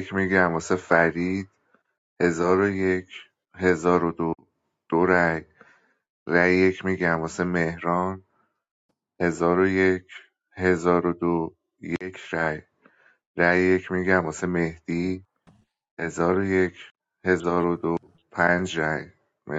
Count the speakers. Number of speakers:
1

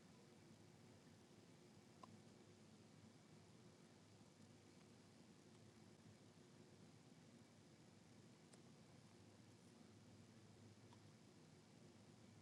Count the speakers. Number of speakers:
0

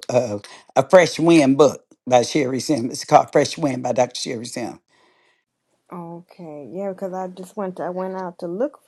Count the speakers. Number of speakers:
2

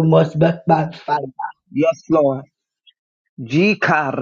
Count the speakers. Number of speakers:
2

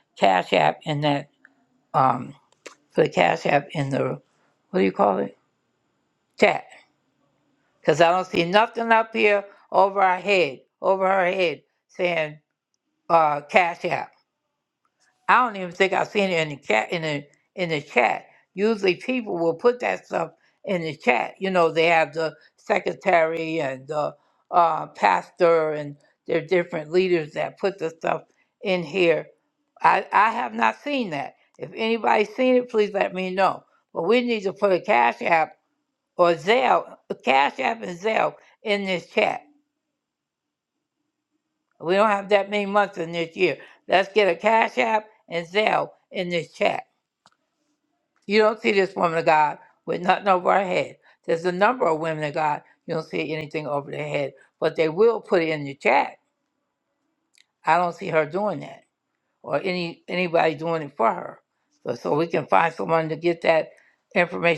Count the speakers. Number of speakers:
1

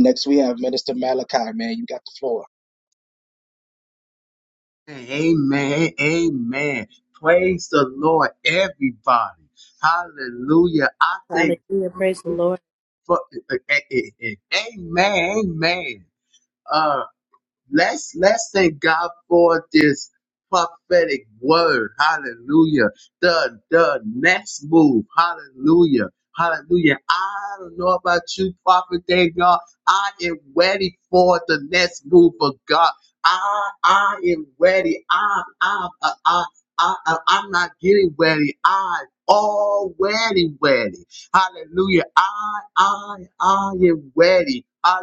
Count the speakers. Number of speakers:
3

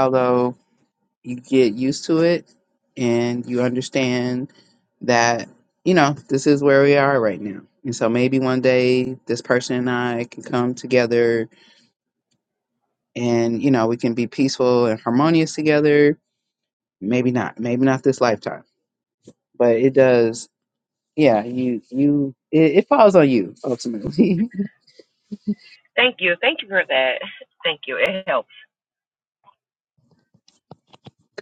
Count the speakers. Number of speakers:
2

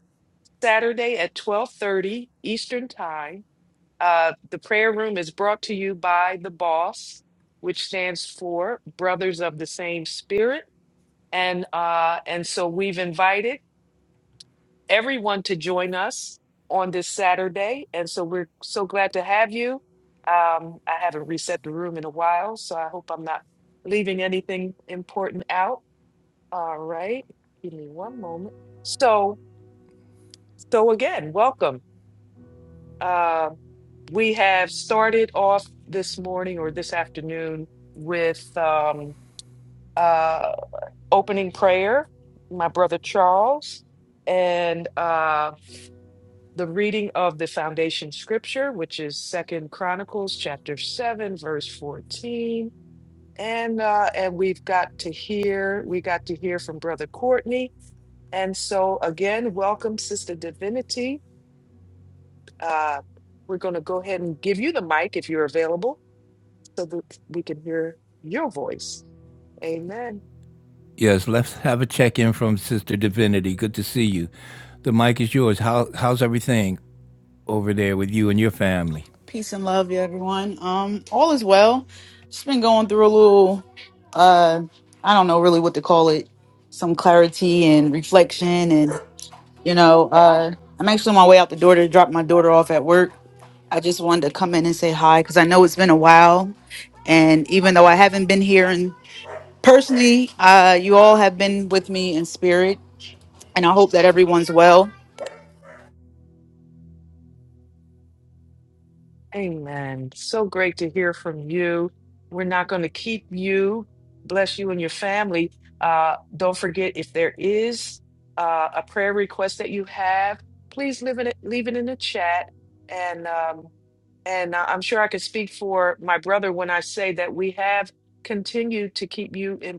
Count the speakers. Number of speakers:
3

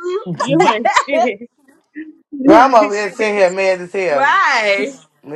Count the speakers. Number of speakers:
3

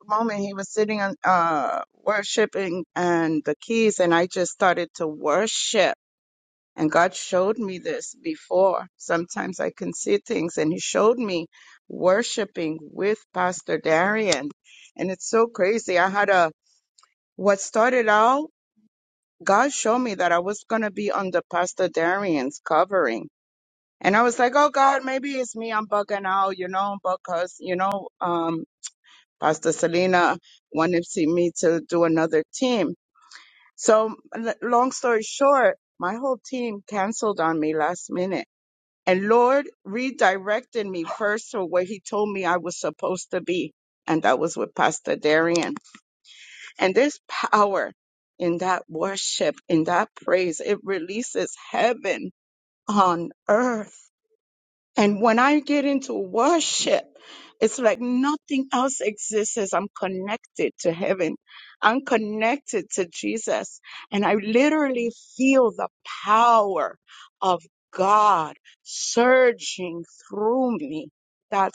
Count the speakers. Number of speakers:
1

